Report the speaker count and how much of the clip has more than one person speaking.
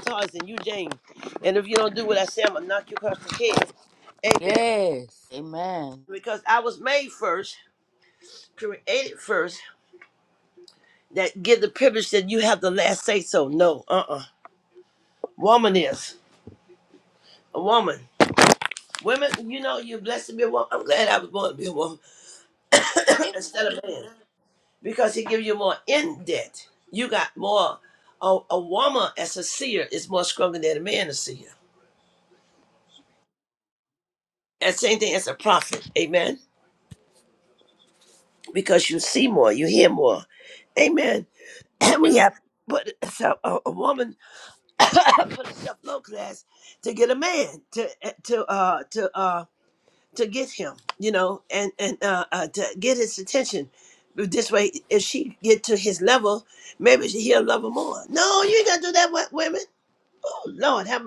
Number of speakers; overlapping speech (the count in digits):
2, under 1%